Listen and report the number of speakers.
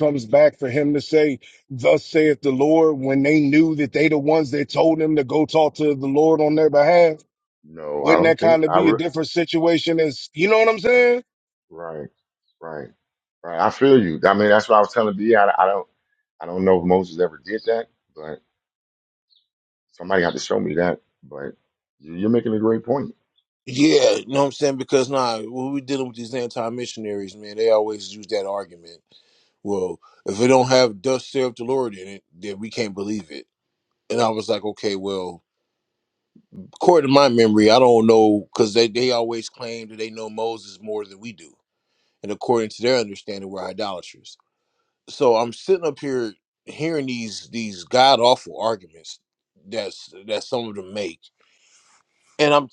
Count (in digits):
3